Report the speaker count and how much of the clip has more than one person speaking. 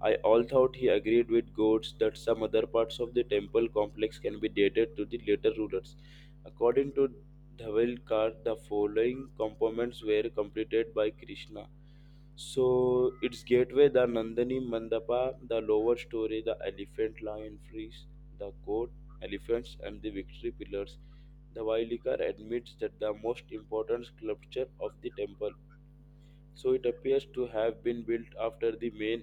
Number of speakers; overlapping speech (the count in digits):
1, no overlap